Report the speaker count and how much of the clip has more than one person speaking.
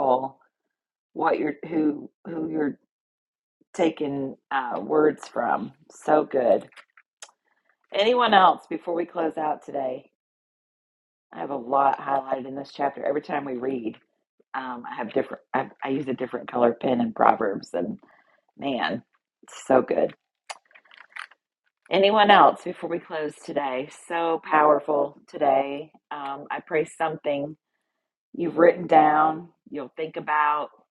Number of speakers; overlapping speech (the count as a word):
one, no overlap